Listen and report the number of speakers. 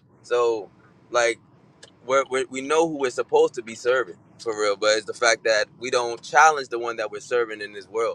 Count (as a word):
one